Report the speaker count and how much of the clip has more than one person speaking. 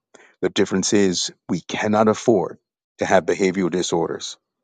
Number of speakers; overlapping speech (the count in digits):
1, no overlap